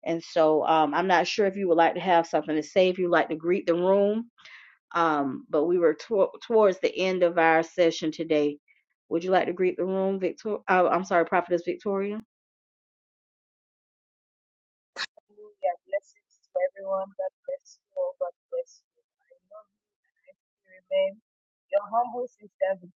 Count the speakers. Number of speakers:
two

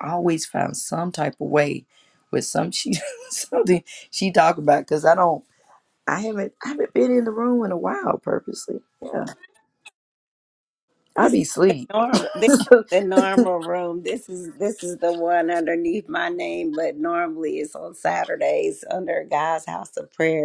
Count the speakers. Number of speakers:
two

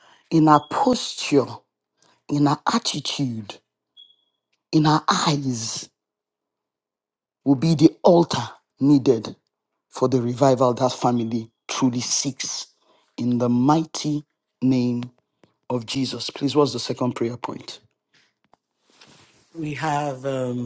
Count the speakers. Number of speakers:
two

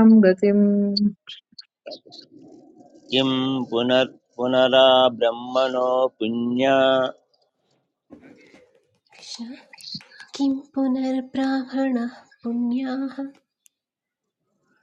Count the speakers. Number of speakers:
three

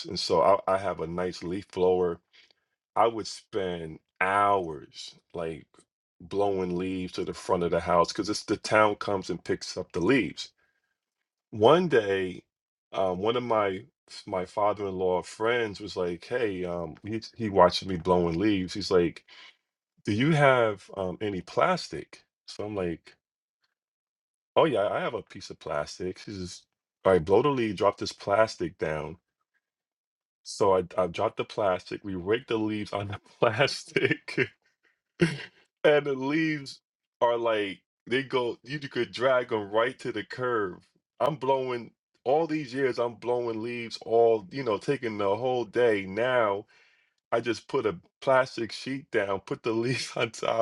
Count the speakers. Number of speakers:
one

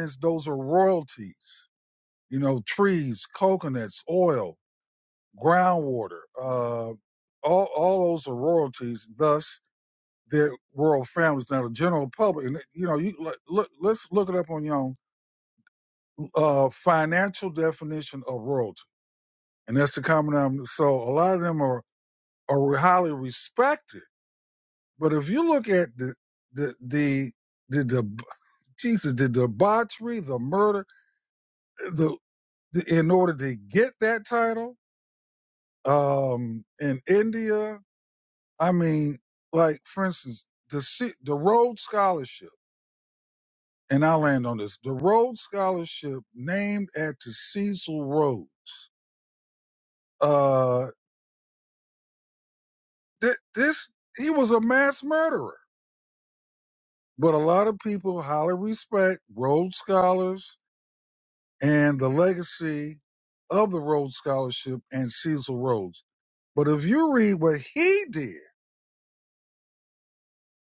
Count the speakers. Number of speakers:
one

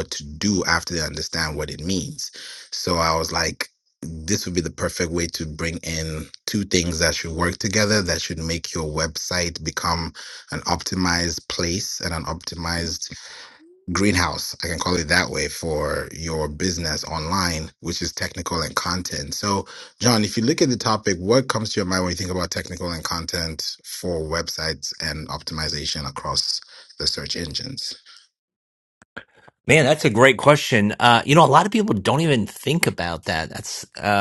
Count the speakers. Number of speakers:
two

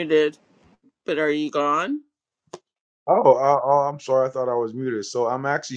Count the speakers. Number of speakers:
two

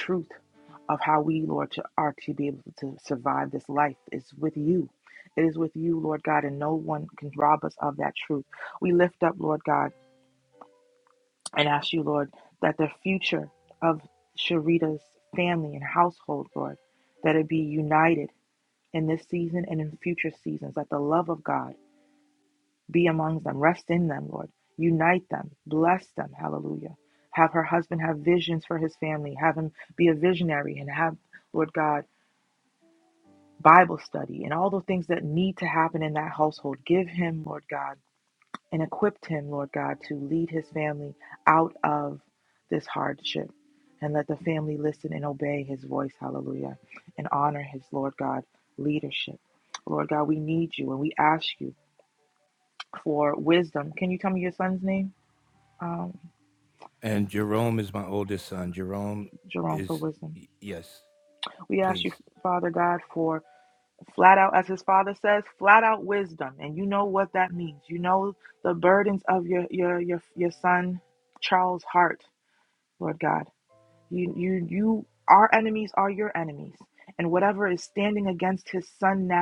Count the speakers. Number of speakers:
two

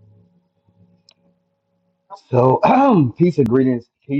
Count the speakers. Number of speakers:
one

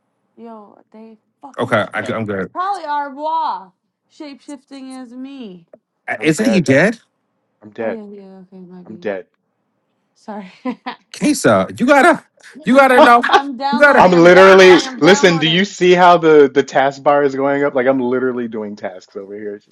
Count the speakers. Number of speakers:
three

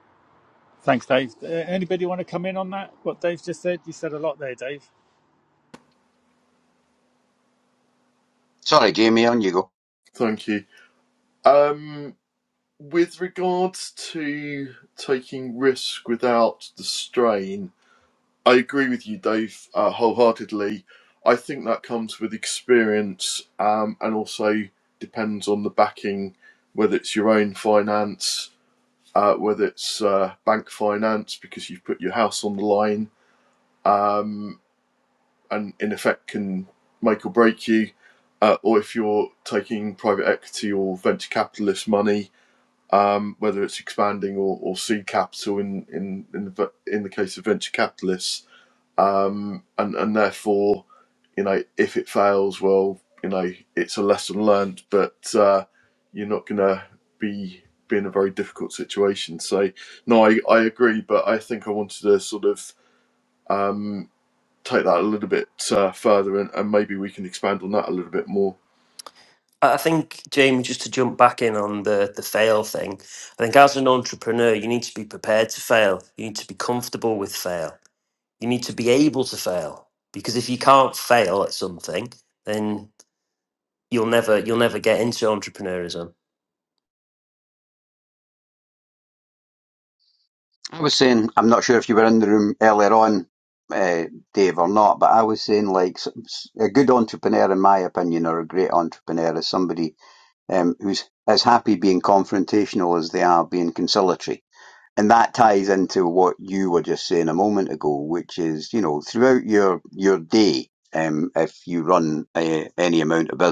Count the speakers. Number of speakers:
four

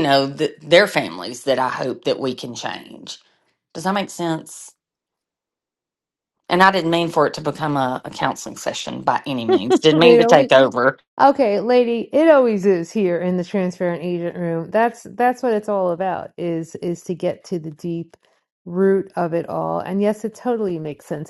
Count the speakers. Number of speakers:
two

